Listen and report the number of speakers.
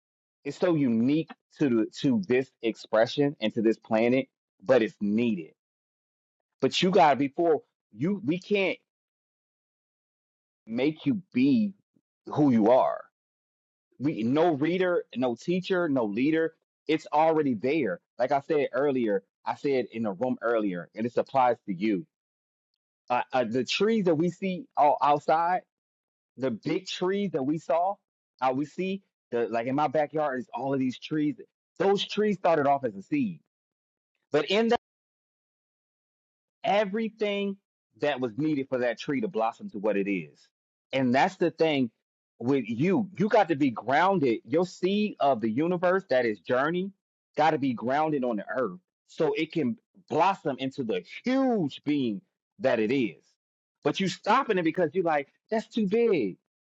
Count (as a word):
one